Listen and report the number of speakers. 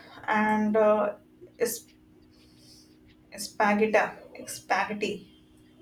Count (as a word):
one